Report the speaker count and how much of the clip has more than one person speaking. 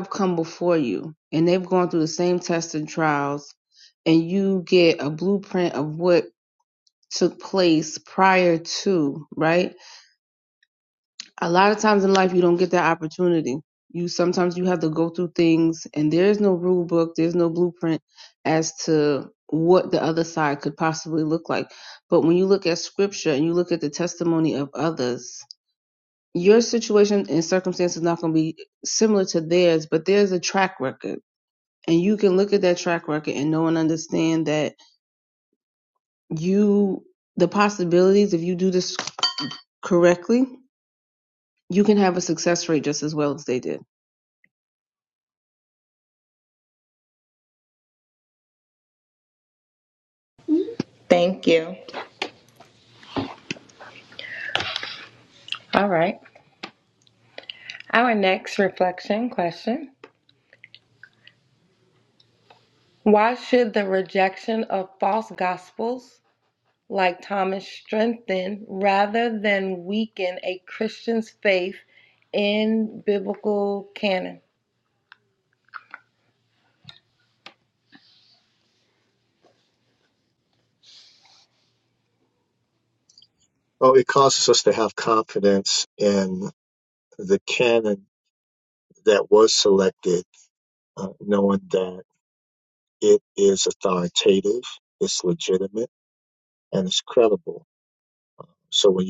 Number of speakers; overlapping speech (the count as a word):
three, no overlap